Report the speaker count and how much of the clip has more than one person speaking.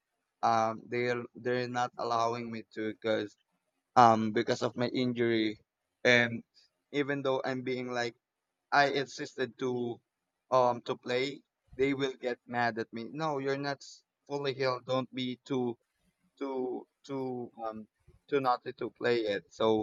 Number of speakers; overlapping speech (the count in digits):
1, no overlap